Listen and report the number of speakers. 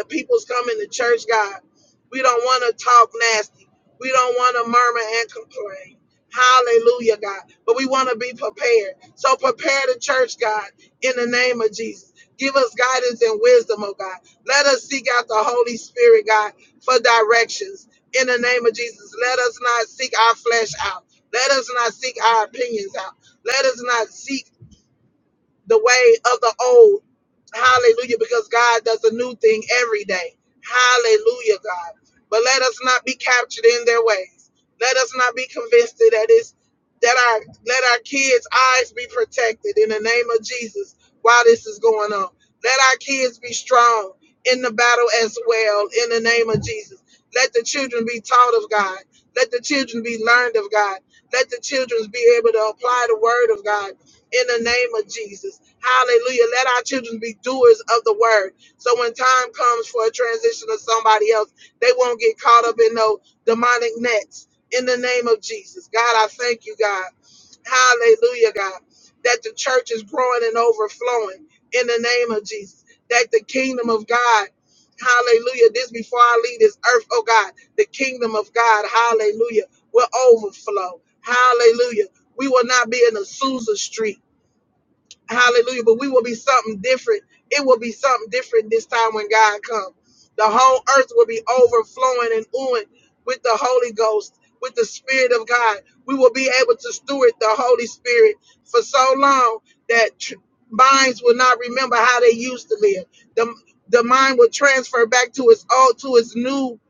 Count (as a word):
one